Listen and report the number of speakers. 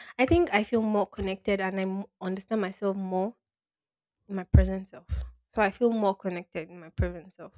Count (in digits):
1